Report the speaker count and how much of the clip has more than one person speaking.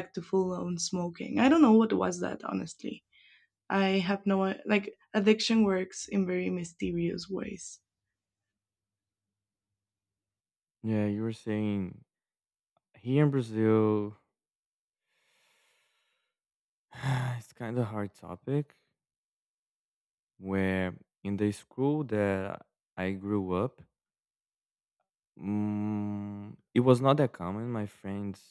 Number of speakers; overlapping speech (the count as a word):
two, no overlap